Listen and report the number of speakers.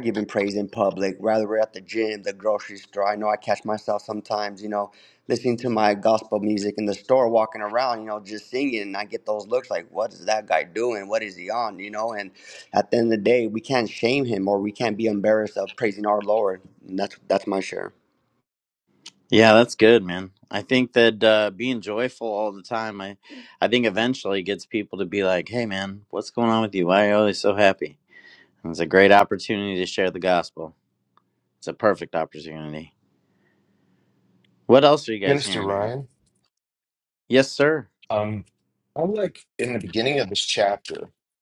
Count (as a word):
three